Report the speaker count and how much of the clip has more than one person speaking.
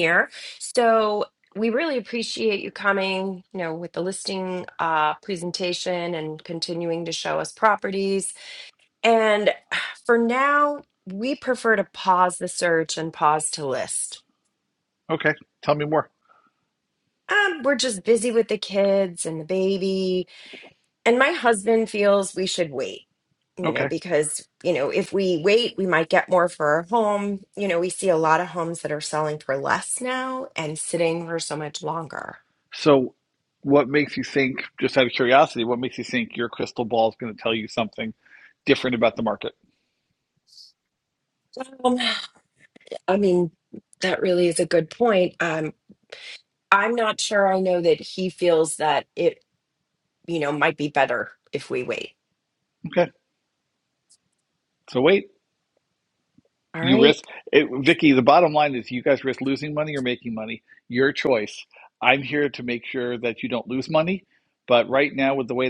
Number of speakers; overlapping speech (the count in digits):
2, about 1%